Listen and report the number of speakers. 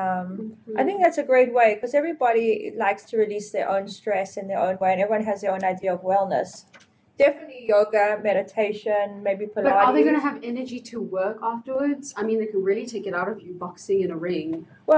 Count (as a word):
two